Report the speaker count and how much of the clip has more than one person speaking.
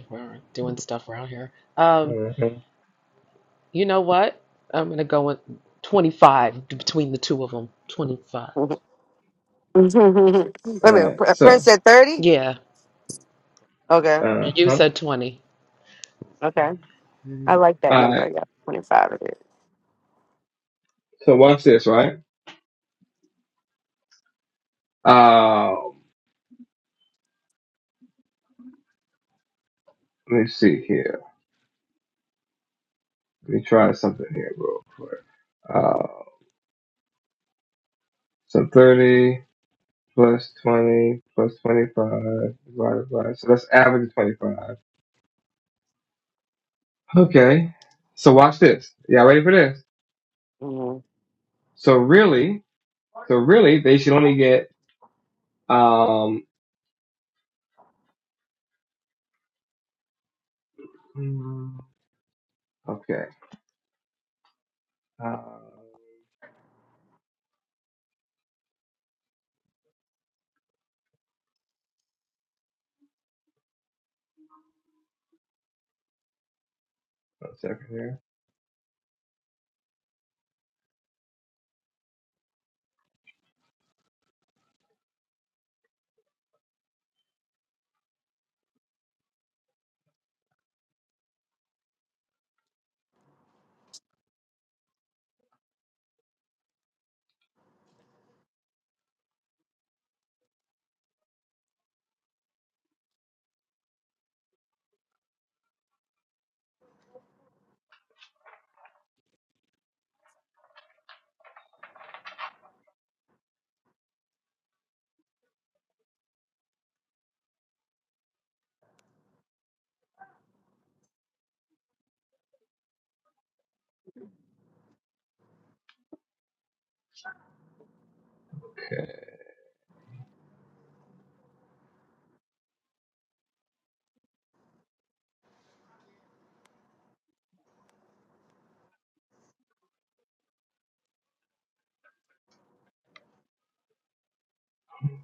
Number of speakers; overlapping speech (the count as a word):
three, about 1%